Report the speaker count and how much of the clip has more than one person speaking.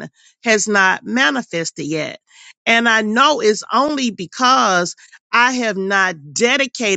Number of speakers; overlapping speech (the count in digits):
1, no overlap